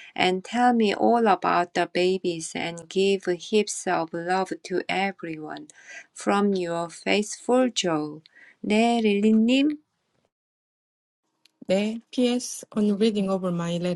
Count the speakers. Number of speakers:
2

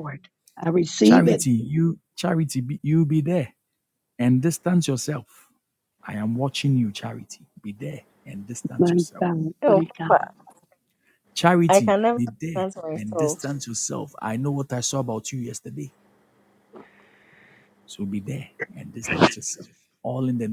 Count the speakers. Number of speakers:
3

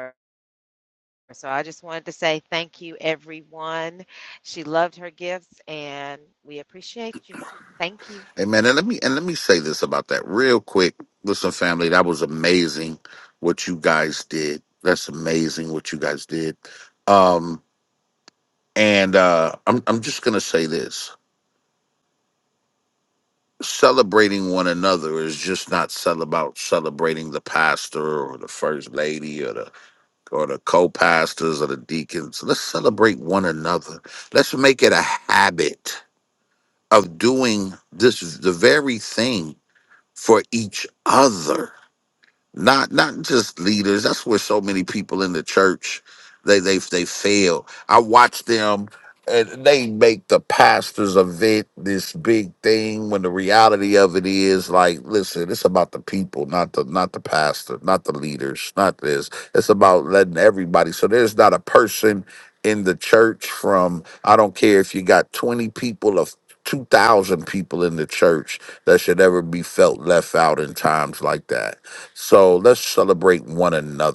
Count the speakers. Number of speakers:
2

